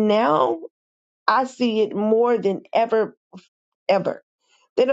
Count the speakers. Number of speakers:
one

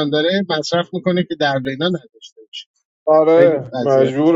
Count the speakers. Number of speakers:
two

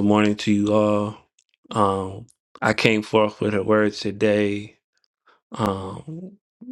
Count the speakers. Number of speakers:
one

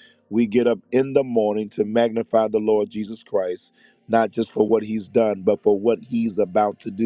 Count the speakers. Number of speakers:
one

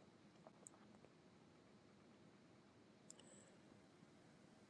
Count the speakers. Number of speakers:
zero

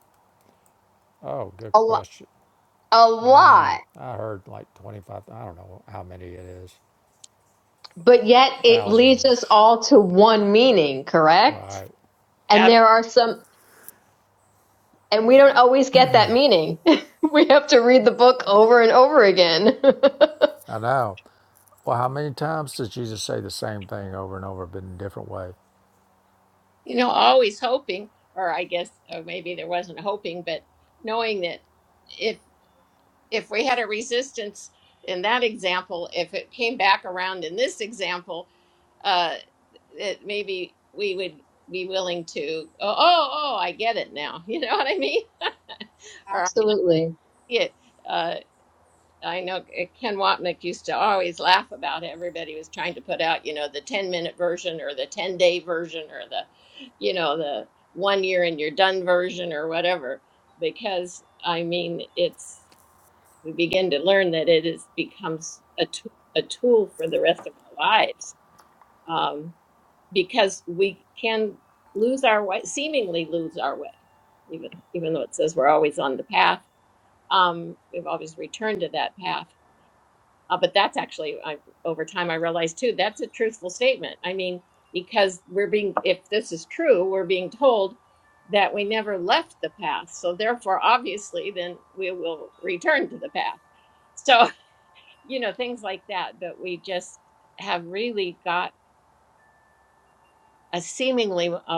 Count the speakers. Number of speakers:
three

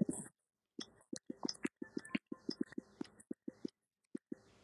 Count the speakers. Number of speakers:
zero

